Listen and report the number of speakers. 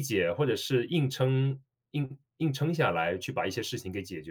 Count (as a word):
one